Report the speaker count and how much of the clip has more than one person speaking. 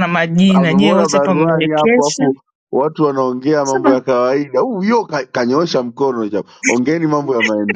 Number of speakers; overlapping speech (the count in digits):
2, about 27%